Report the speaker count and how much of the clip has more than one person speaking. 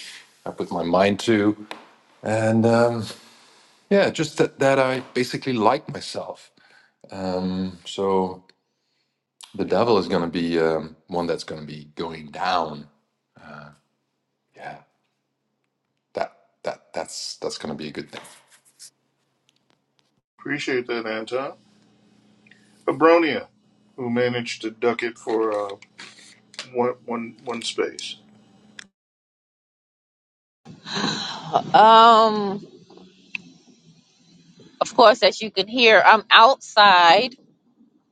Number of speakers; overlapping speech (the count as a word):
three, no overlap